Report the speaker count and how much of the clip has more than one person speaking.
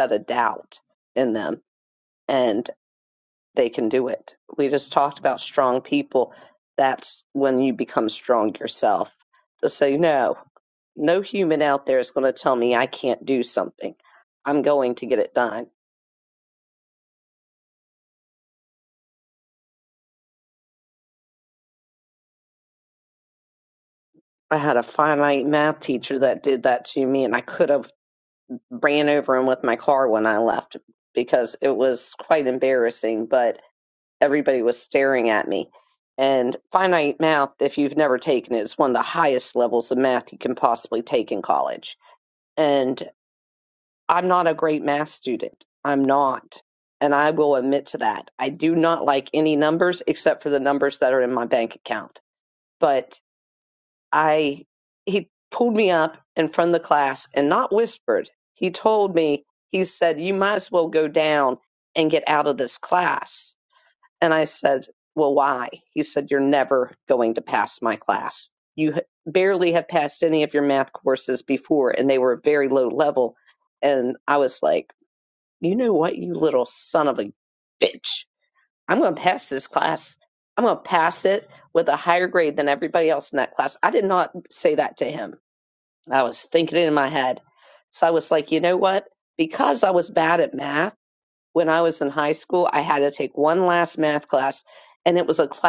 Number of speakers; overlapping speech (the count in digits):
1, no overlap